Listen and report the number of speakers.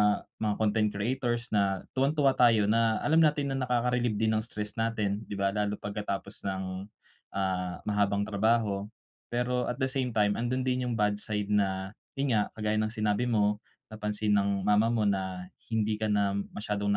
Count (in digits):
1